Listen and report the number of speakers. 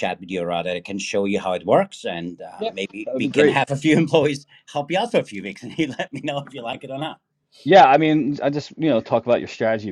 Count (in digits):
2